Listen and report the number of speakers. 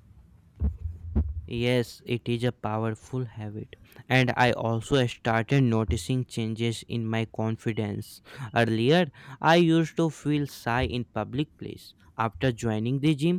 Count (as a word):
one